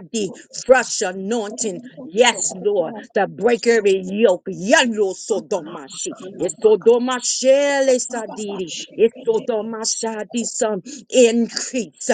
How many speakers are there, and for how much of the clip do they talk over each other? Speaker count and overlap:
1, no overlap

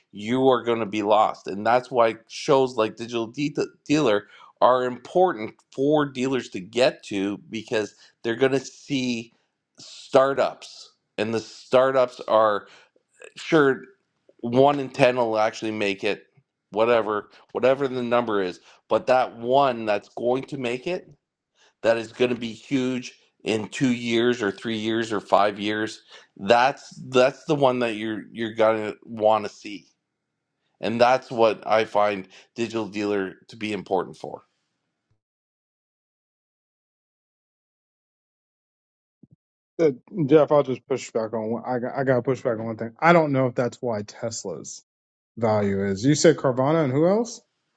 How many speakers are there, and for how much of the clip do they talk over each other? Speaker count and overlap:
2, no overlap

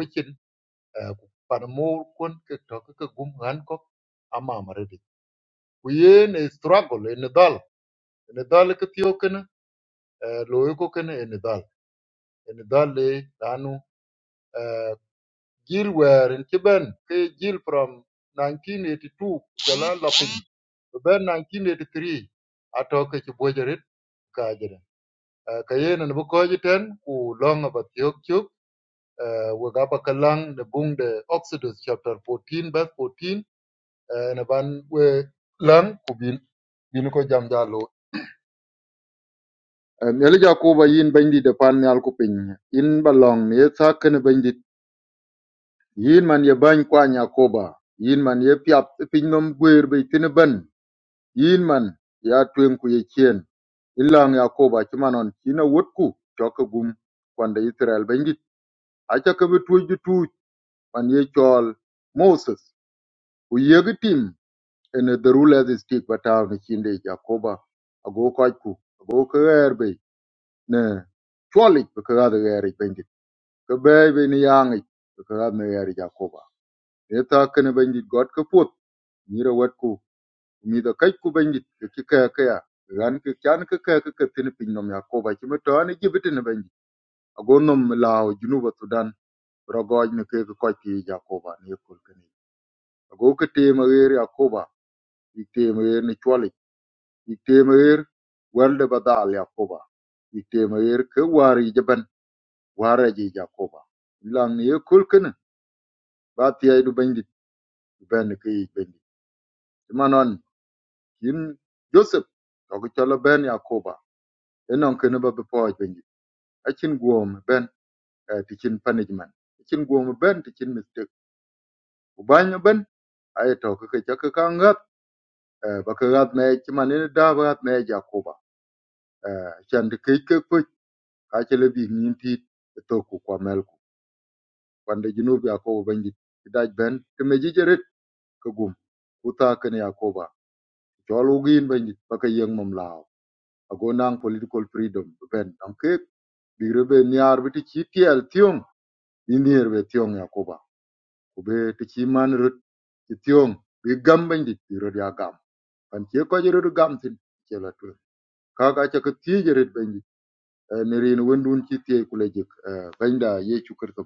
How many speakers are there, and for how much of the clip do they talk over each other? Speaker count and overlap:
1, no overlap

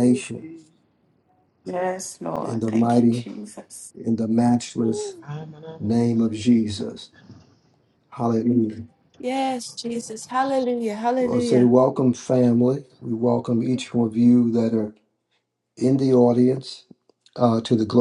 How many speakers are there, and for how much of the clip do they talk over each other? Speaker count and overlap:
4, about 12%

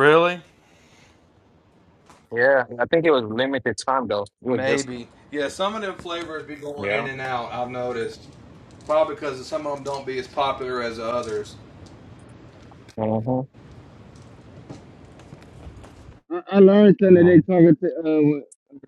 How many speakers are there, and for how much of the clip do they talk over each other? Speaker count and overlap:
3, about 6%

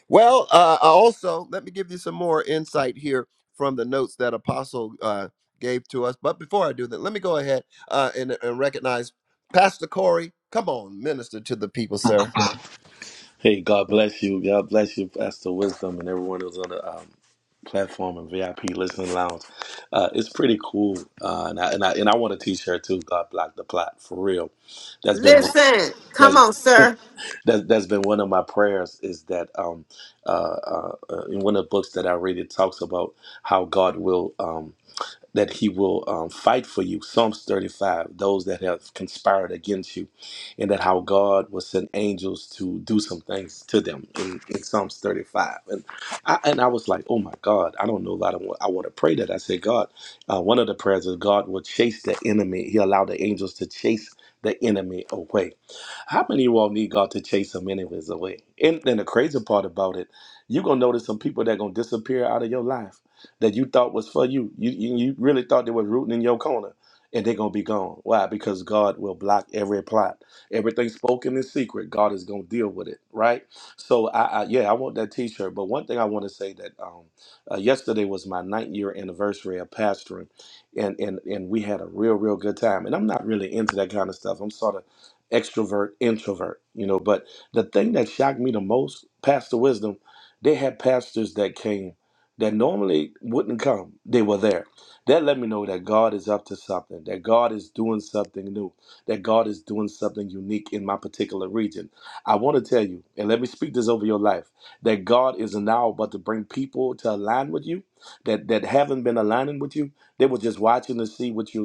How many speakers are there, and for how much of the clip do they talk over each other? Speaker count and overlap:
3, about 1%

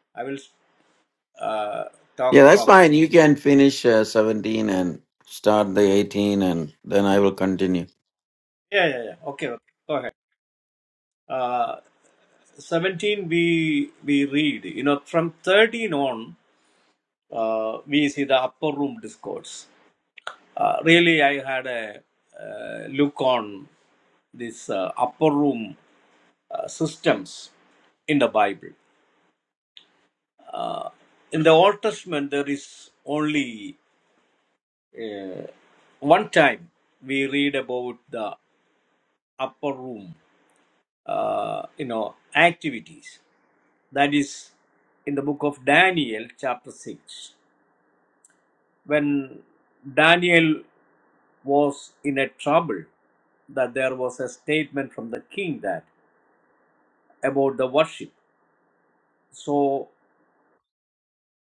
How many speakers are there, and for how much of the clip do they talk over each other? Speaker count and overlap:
2, about 1%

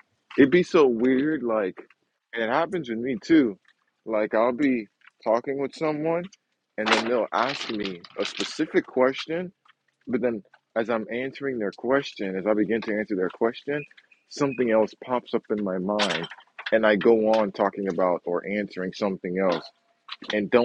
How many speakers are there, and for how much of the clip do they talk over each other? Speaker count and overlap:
1, no overlap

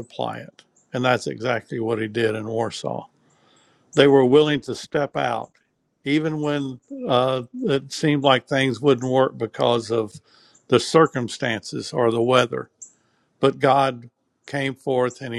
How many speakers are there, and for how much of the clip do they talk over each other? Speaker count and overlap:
1, no overlap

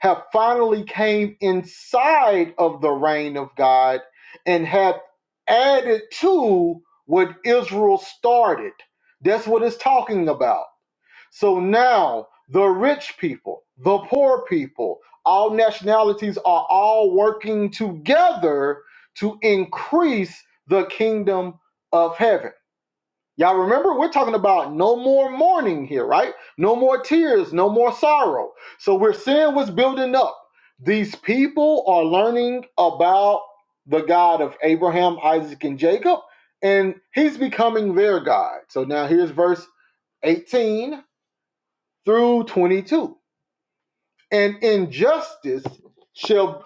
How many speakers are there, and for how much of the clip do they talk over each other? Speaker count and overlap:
1, no overlap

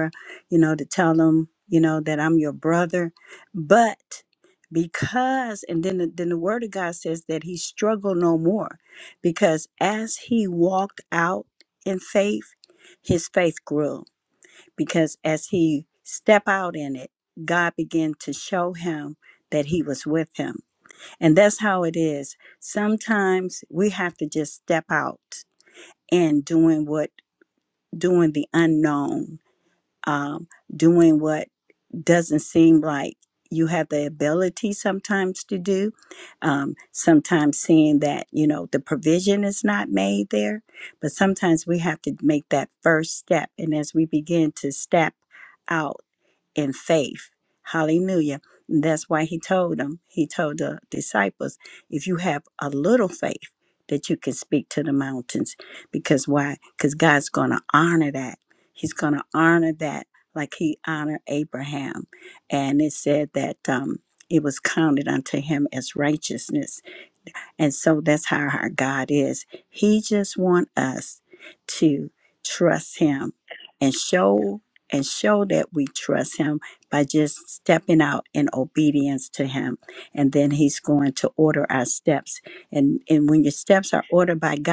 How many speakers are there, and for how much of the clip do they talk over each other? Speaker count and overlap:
1, no overlap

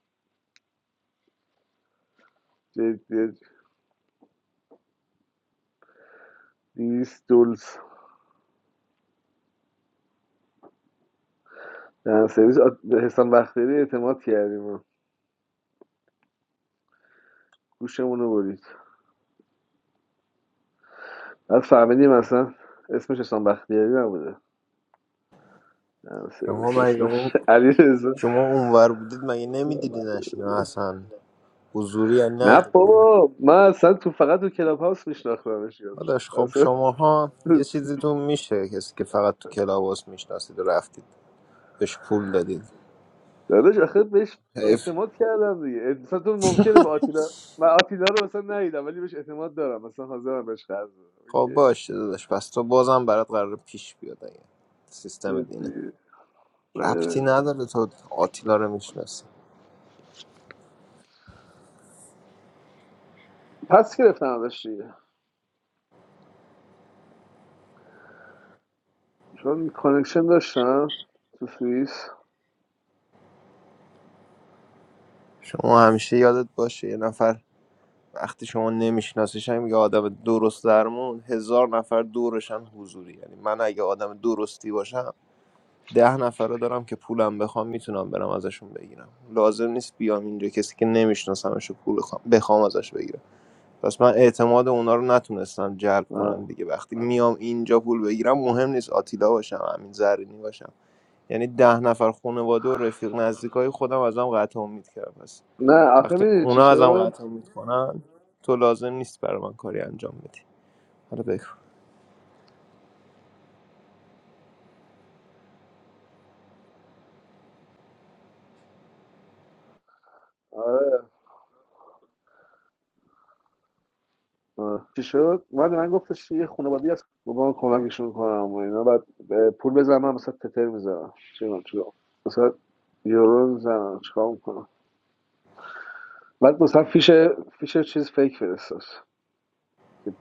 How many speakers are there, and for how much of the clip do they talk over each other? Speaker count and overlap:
2, about 3%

